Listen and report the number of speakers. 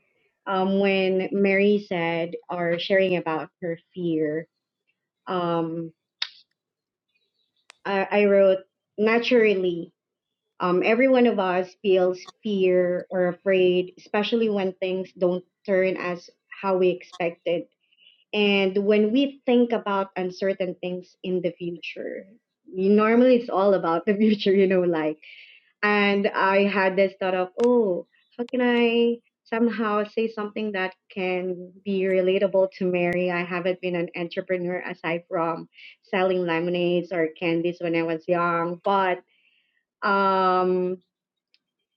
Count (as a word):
one